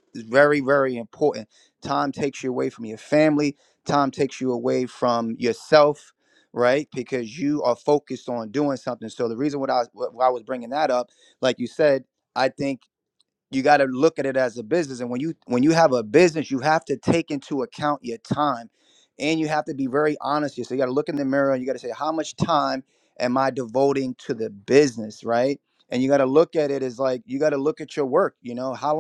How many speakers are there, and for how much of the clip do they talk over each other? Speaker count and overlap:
1, no overlap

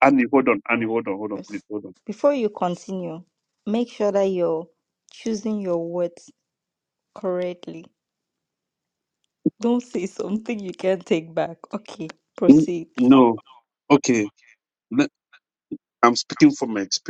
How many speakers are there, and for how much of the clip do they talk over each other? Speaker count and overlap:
2, about 1%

